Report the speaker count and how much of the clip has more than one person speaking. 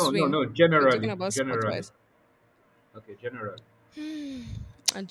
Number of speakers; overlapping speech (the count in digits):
2, about 27%